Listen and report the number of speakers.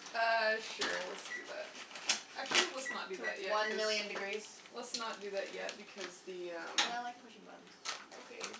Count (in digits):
2